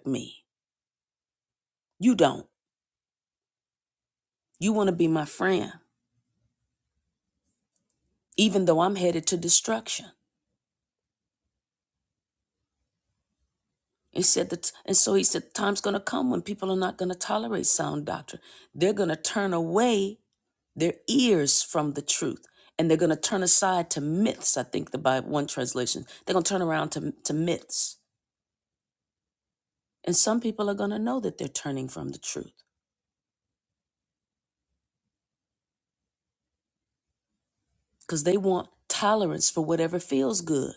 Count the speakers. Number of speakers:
1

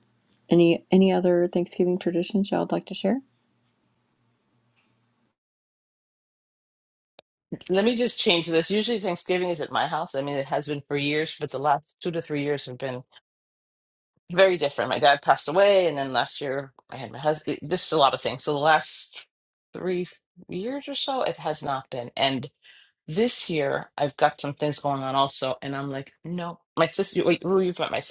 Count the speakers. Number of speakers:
2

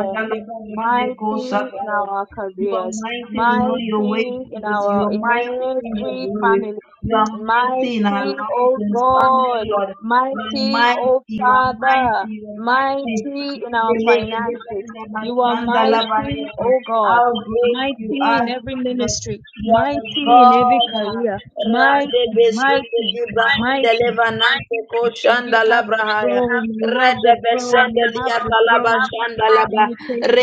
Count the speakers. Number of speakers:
2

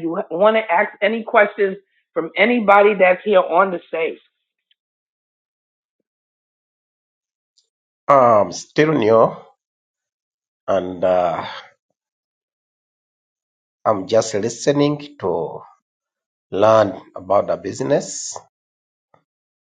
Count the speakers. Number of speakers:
2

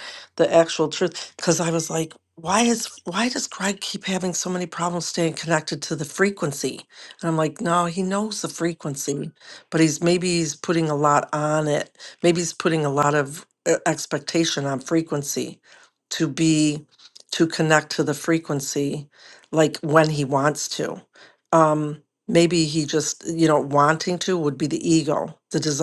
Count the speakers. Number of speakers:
1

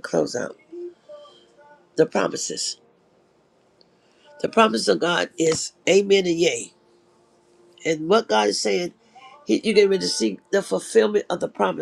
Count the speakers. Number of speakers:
1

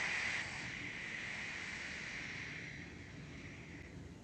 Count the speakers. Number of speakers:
0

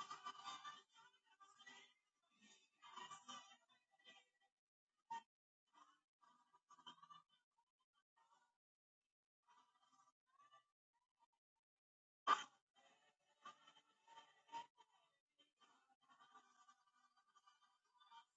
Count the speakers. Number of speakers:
0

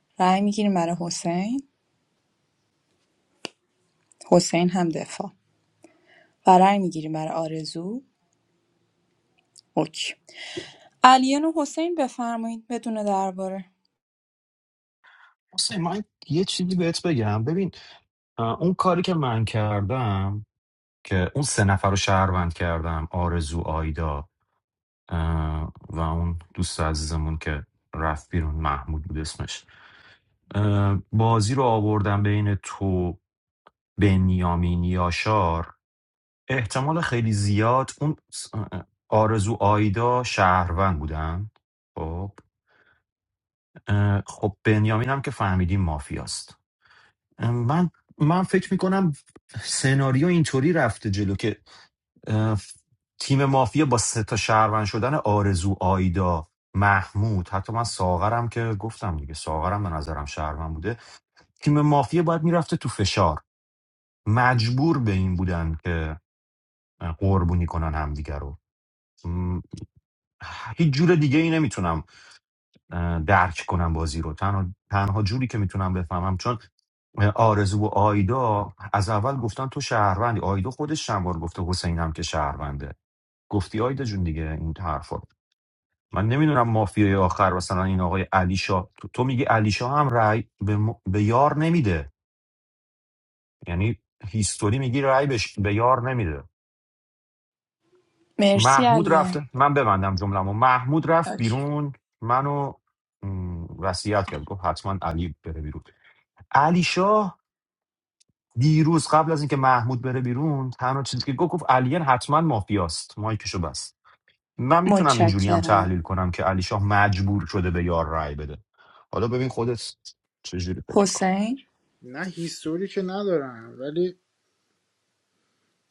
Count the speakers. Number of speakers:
3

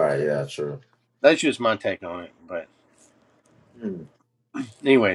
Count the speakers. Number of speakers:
2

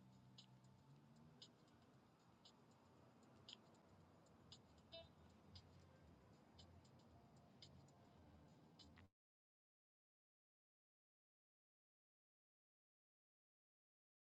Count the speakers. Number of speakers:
0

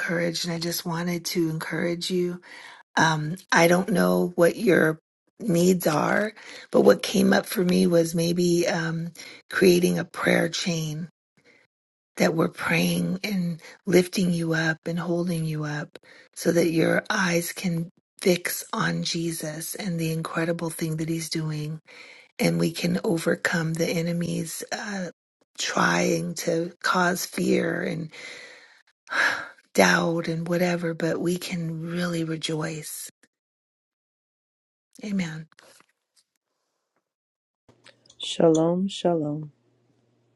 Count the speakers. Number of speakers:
2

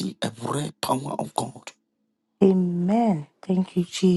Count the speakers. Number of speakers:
2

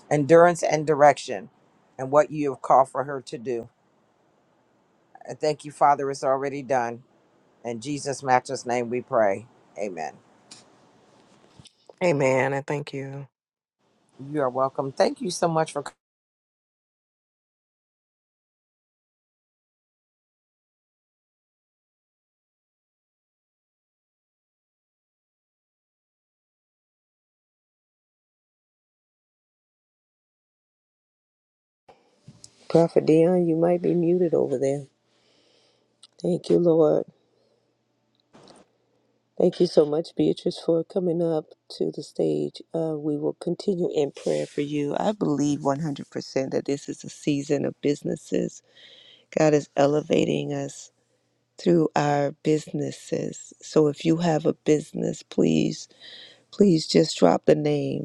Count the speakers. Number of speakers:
3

